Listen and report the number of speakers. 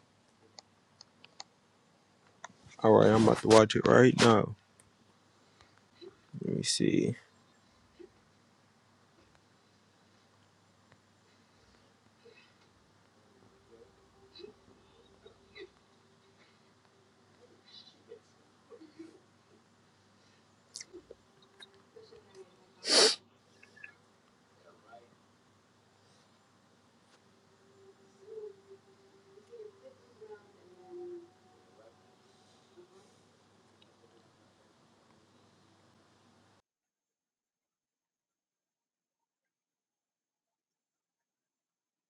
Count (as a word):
one